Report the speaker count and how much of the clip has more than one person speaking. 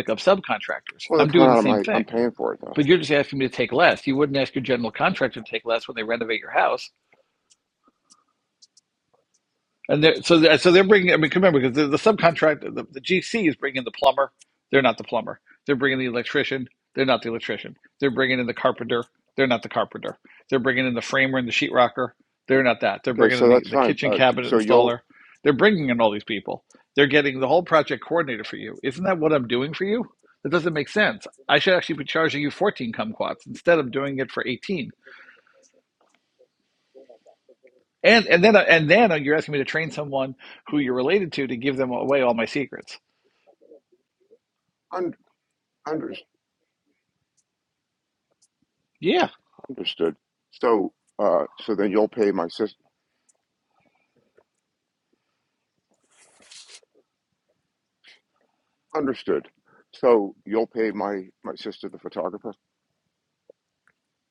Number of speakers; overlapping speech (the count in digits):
2, about 4%